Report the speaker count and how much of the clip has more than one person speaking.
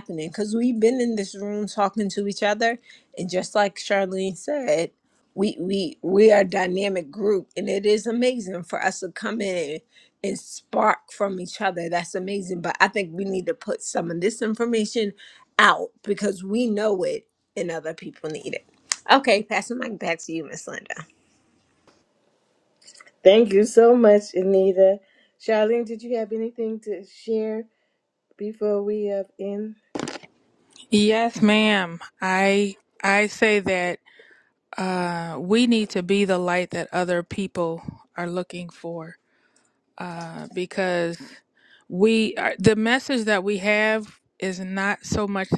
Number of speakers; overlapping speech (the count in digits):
3, no overlap